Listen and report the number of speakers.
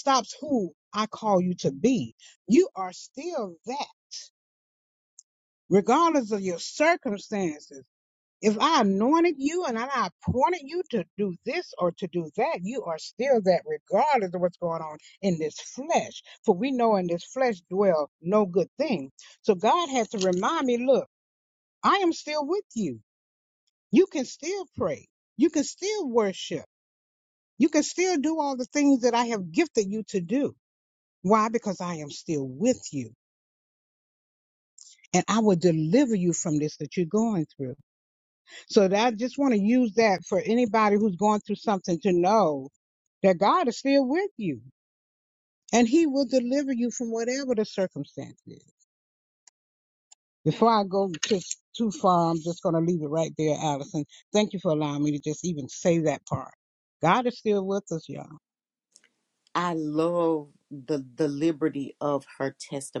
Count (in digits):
2